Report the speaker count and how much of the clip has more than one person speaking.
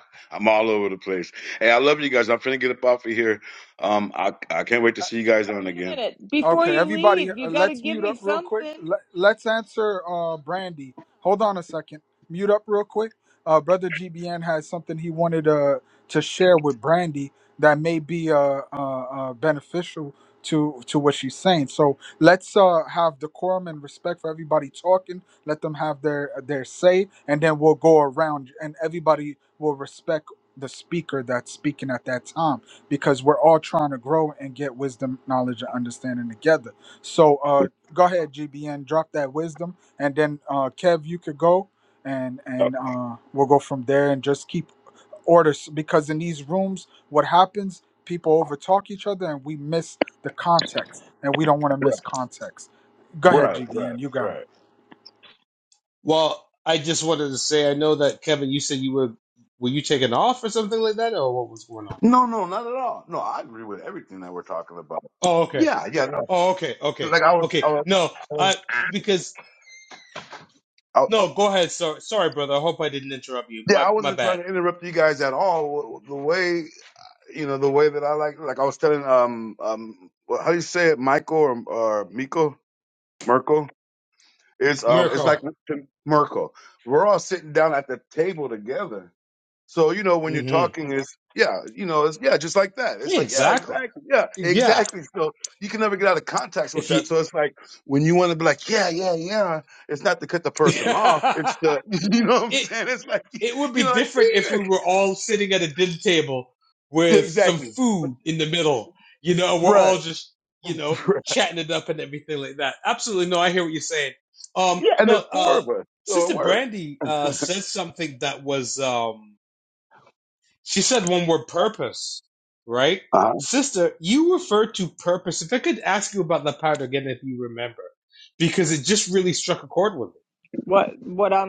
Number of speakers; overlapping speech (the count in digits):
4, about 10%